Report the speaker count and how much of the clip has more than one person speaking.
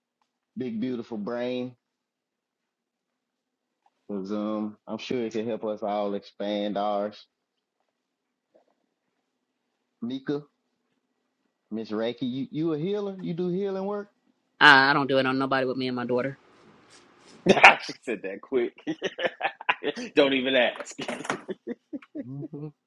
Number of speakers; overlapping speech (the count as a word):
three, under 1%